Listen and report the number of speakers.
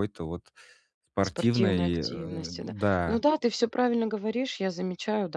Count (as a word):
two